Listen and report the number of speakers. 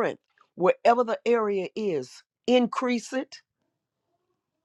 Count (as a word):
one